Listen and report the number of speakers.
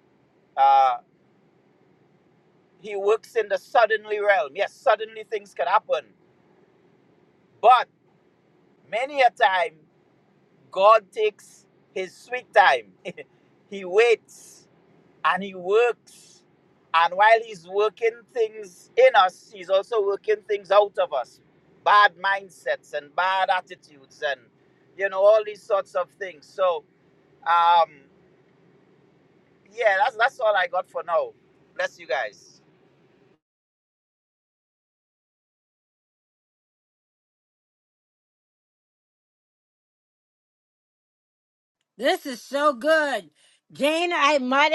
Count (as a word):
two